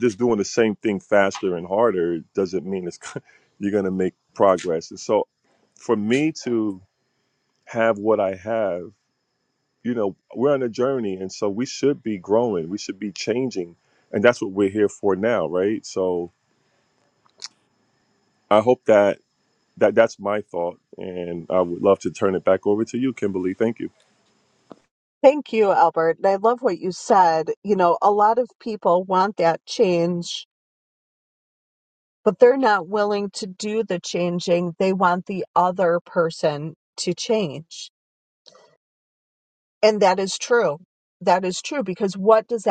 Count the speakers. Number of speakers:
2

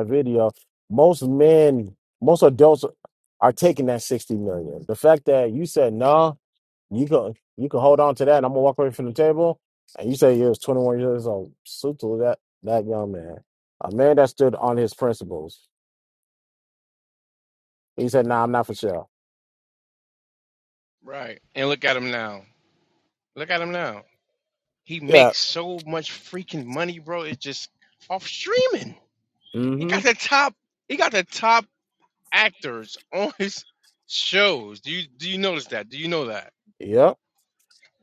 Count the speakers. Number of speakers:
2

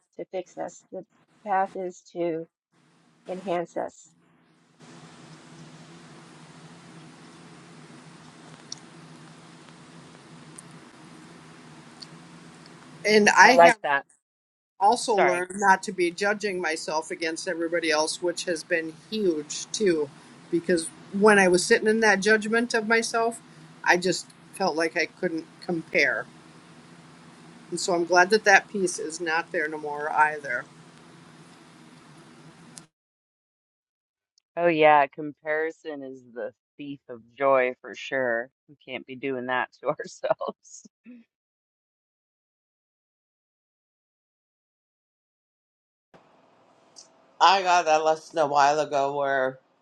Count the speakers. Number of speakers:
4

